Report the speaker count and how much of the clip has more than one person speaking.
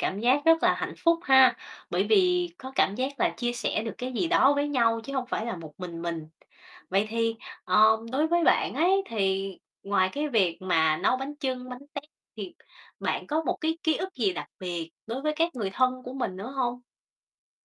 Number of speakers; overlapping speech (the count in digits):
1, no overlap